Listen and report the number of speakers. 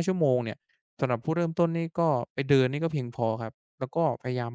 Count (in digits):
1